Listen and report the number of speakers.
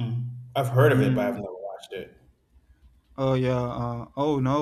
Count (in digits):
2